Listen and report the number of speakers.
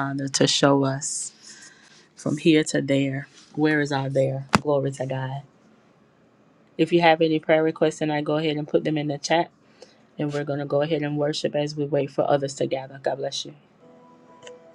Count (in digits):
1